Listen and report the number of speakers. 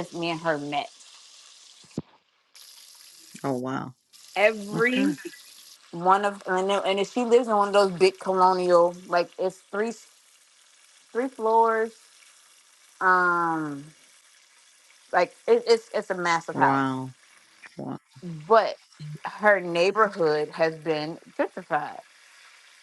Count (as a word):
two